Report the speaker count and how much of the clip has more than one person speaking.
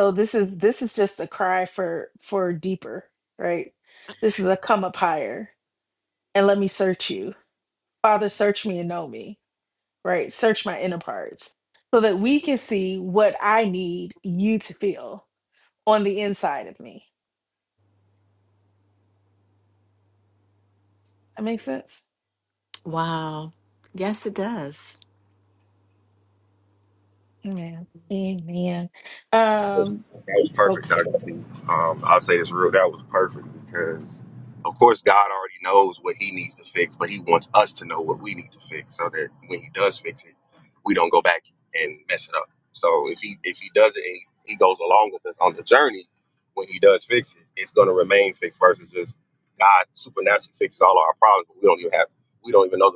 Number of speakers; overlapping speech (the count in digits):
3, about 1%